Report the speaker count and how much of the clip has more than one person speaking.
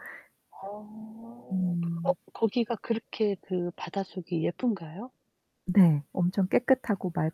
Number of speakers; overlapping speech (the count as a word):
two, about 3%